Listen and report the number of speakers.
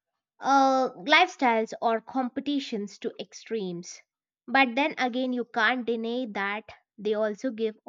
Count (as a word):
one